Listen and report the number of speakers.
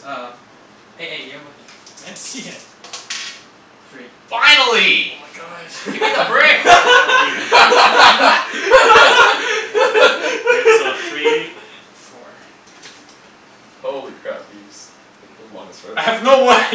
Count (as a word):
four